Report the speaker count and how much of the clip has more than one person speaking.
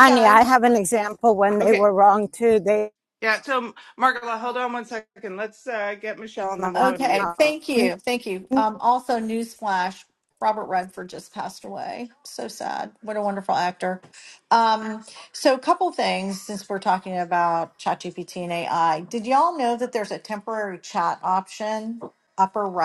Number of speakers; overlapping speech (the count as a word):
three, about 6%